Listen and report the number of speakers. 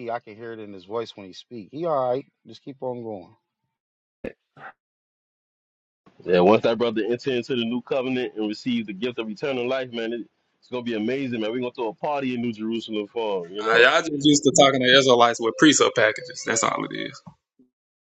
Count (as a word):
three